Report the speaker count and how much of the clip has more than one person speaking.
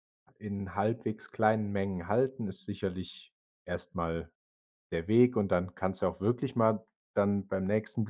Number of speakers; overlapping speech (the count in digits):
1, no overlap